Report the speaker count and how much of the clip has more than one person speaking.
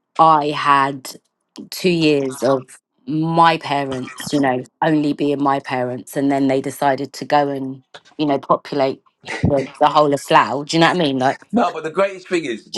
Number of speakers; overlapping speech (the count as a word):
two, under 1%